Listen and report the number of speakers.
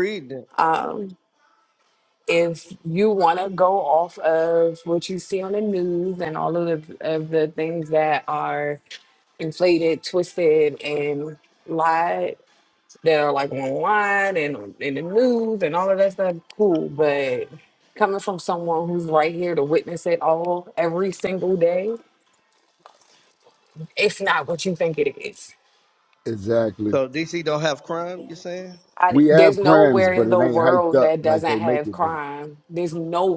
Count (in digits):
3